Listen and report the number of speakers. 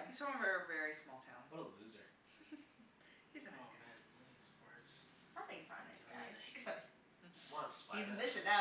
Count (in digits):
4